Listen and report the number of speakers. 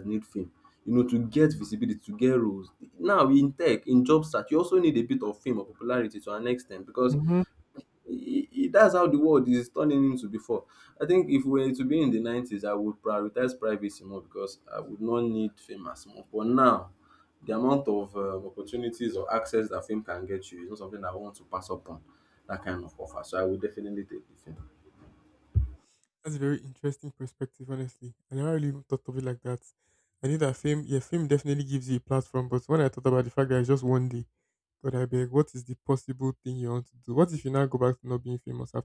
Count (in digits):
2